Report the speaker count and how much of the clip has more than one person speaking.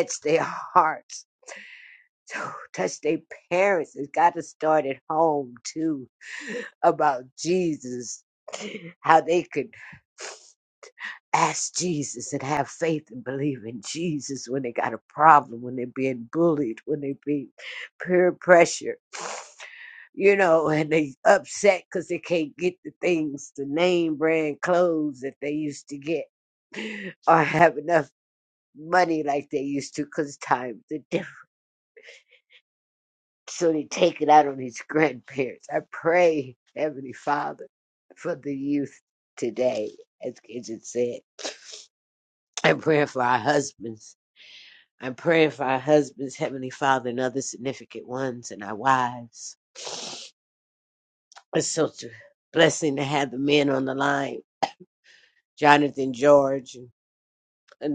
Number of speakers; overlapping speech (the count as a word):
one, no overlap